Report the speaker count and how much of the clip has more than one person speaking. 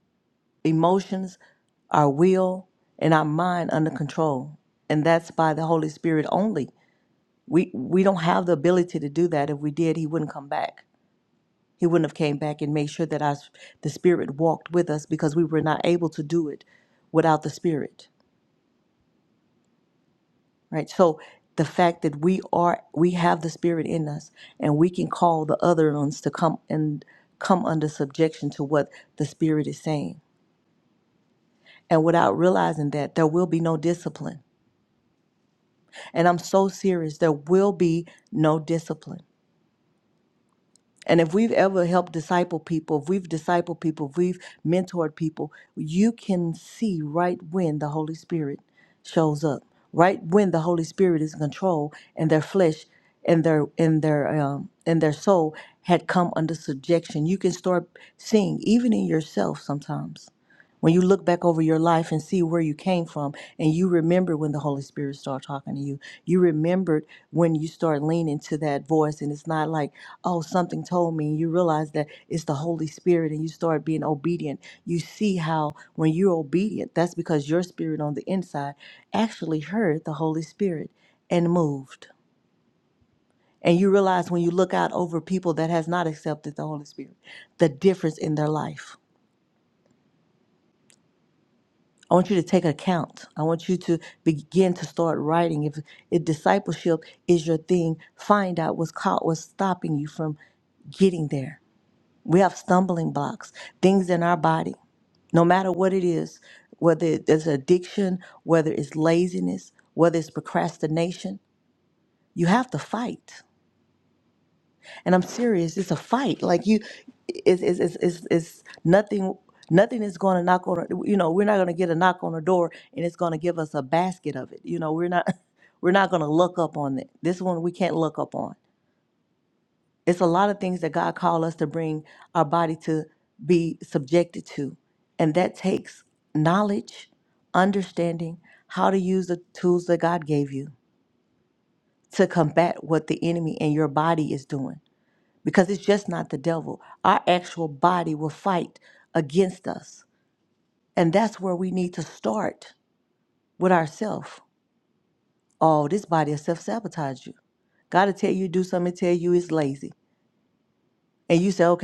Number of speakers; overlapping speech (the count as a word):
one, no overlap